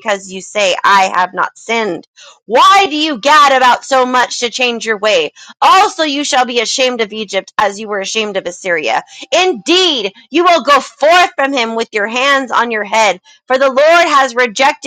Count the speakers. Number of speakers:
1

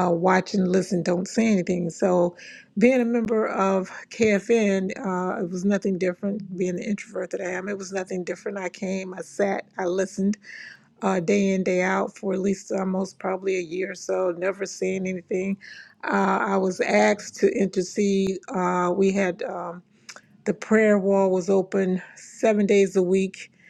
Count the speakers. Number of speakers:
1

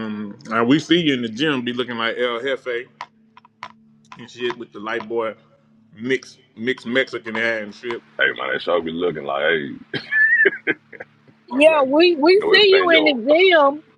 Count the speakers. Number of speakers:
3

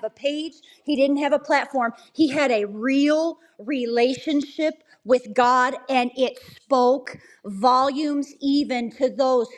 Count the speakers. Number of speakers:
1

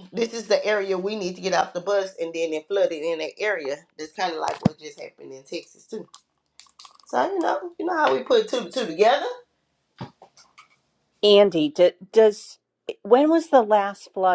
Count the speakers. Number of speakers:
2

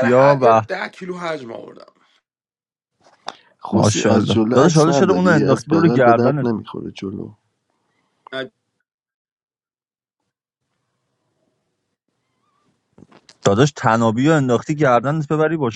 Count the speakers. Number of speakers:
3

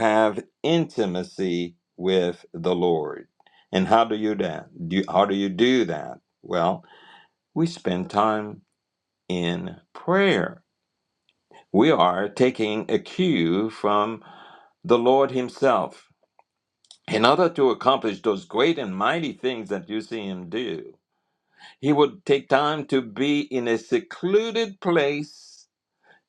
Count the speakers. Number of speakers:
1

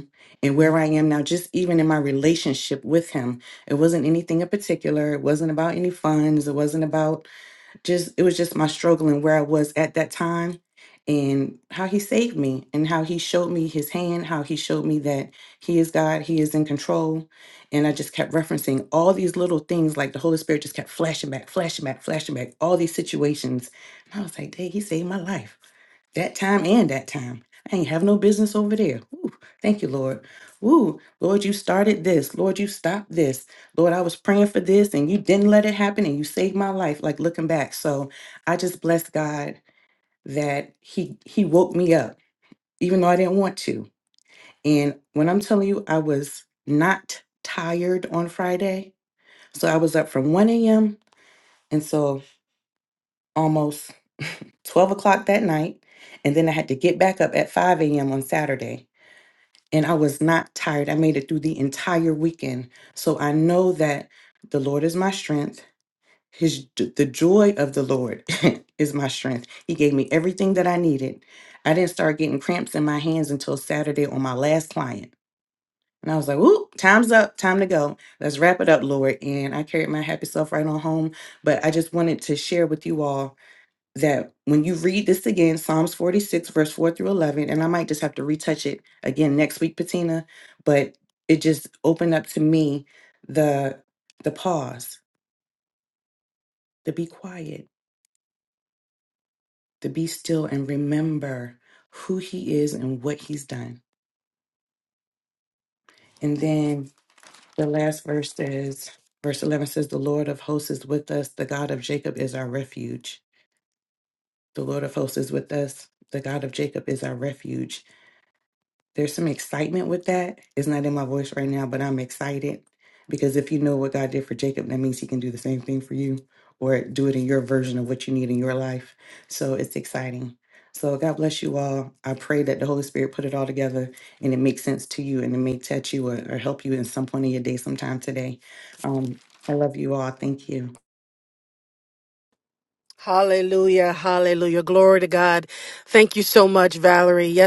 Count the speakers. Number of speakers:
2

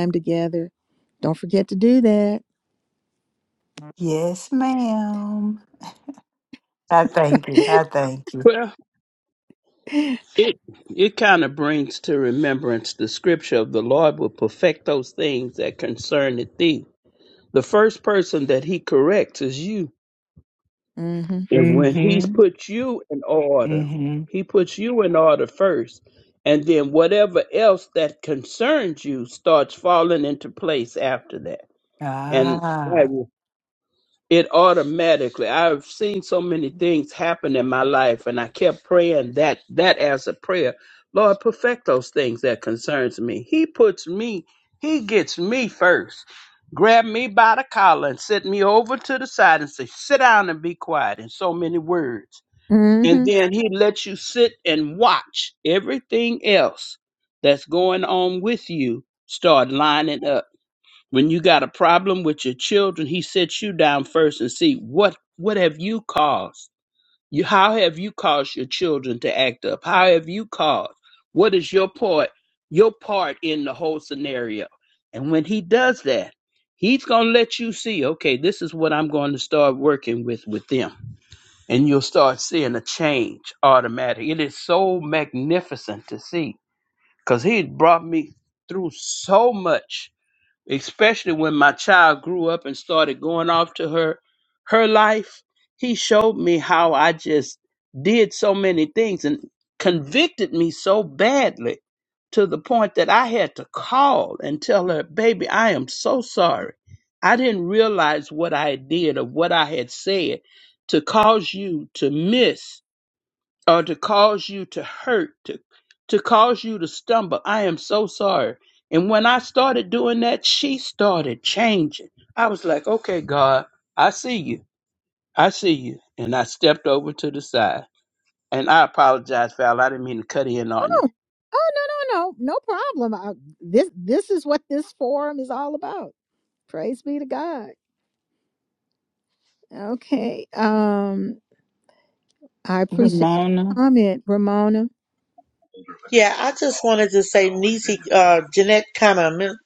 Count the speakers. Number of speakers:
4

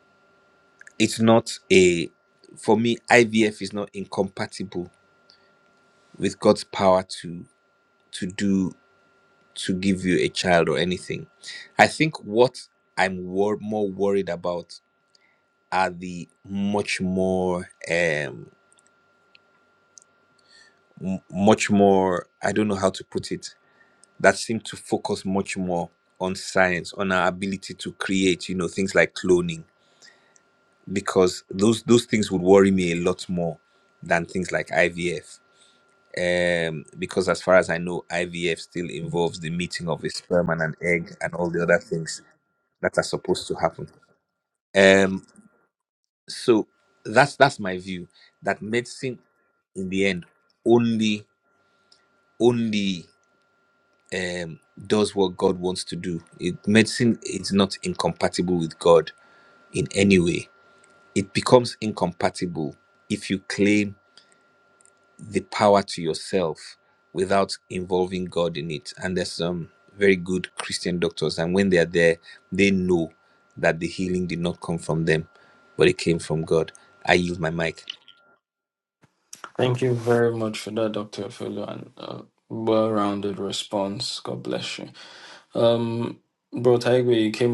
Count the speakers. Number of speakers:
2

